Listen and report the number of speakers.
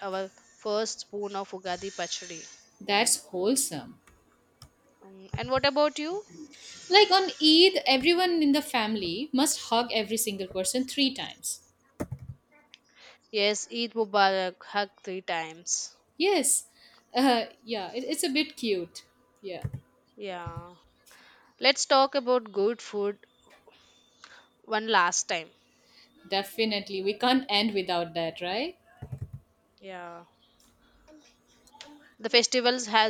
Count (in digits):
2